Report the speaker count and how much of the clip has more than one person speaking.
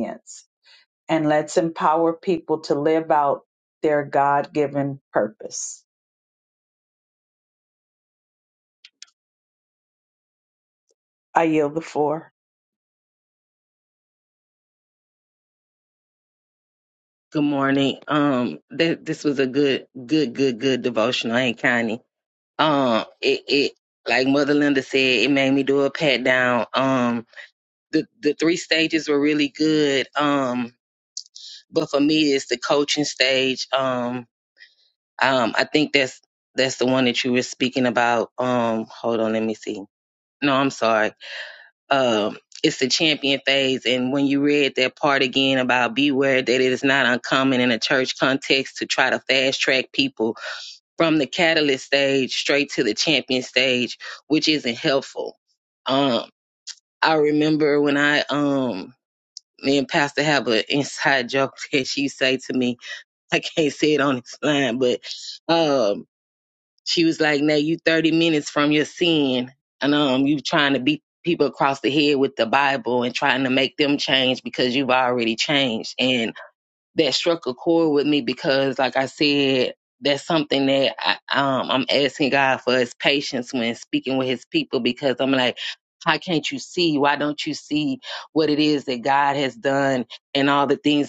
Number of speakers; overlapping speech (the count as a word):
two, no overlap